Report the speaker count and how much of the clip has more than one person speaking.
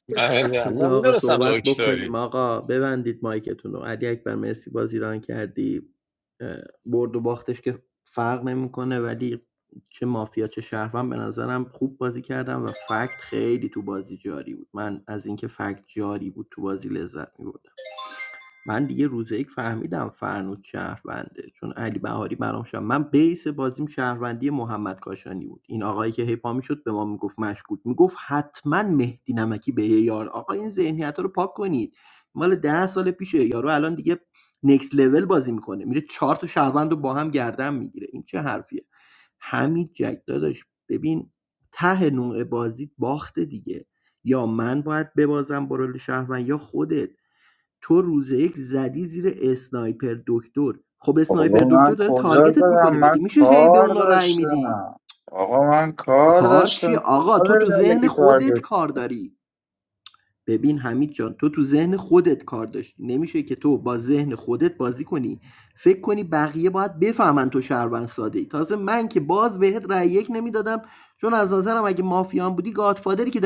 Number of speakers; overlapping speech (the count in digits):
3, about 10%